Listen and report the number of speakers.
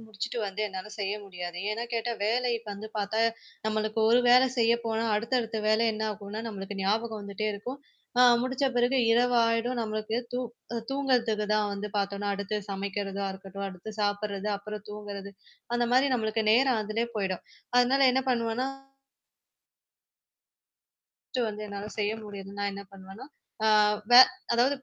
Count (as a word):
one